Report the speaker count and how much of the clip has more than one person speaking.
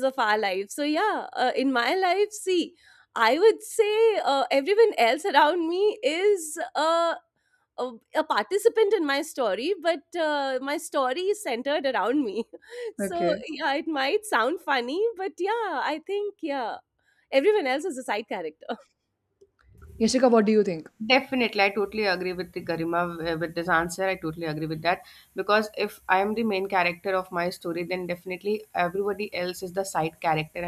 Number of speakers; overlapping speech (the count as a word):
three, about 1%